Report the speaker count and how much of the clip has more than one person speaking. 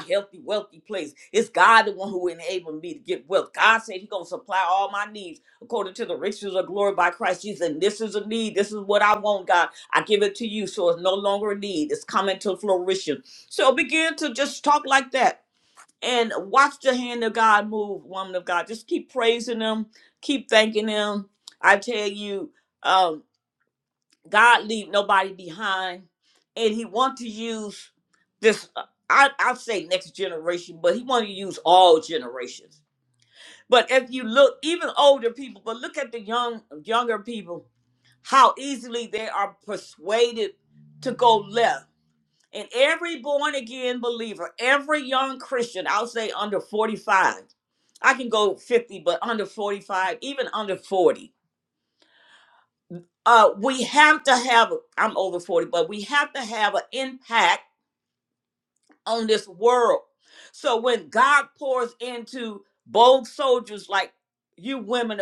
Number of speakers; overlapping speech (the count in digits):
1, no overlap